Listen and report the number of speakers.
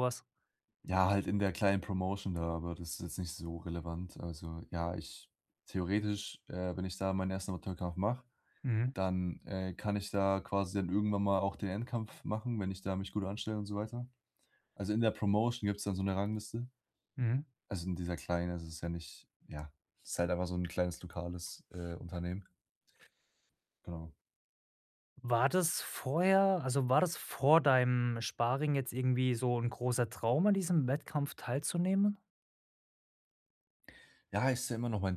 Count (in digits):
2